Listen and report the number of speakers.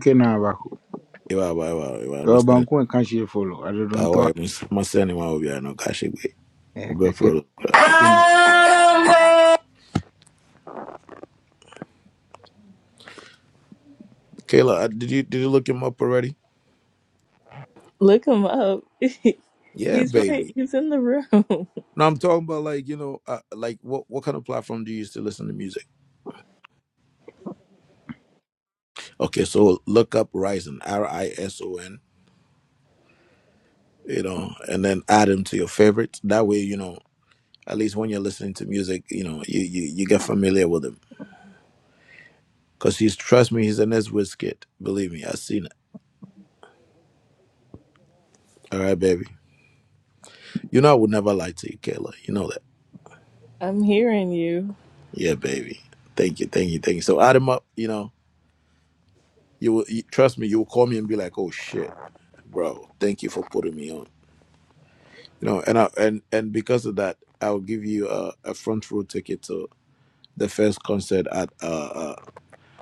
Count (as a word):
three